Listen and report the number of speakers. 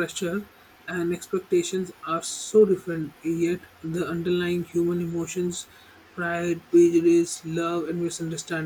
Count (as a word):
one